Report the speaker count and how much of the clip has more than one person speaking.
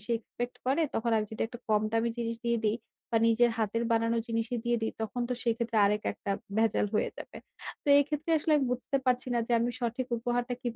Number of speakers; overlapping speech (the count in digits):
1, no overlap